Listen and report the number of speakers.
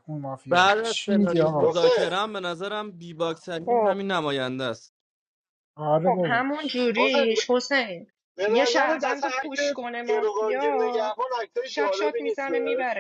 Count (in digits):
4